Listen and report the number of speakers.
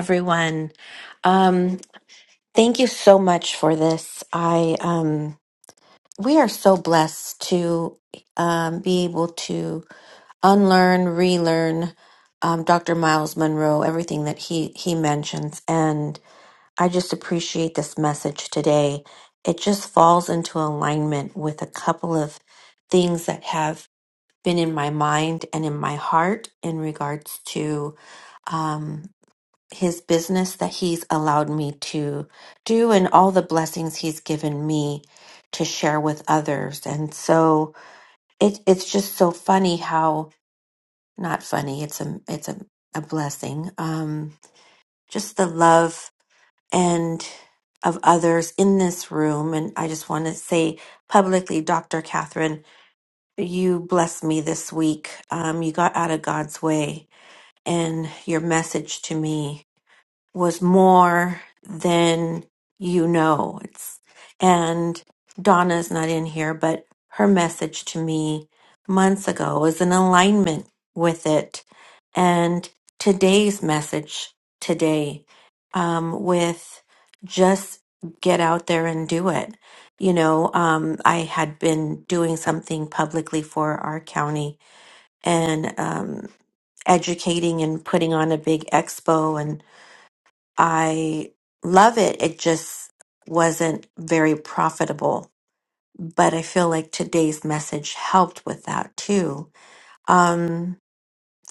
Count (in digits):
1